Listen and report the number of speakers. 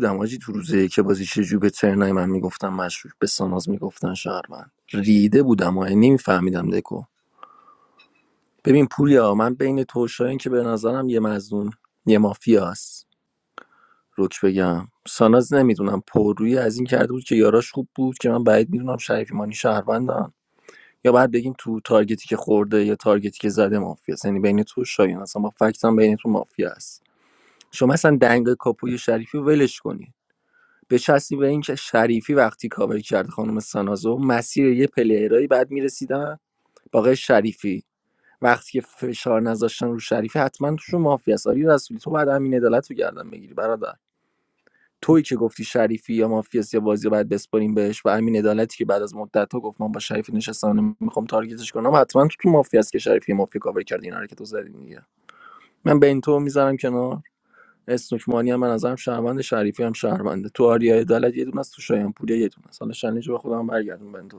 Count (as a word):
one